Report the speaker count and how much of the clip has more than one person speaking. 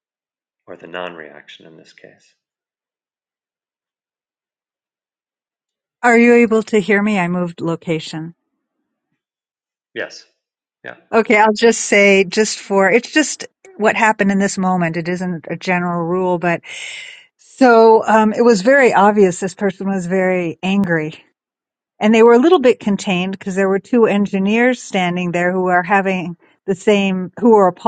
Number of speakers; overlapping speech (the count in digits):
2, no overlap